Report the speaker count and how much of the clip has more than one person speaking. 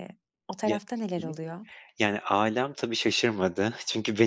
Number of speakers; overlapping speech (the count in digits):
2, about 8%